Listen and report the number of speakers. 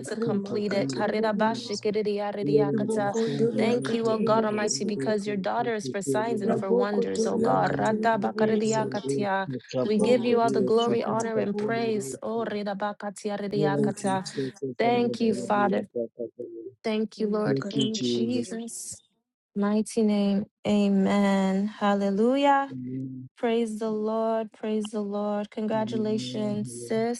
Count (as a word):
three